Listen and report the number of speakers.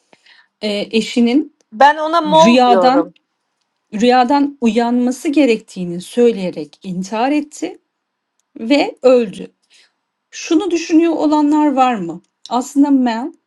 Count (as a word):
two